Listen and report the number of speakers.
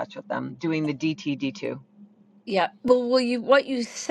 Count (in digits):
2